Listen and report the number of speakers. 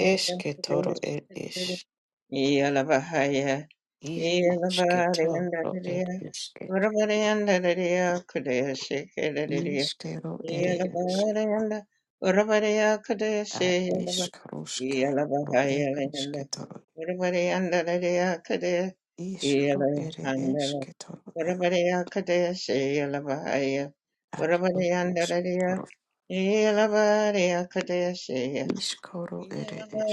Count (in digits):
2